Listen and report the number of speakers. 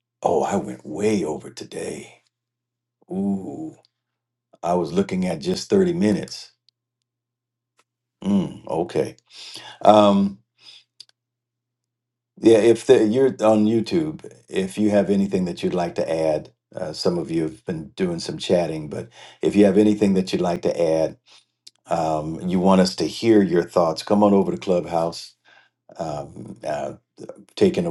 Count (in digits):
1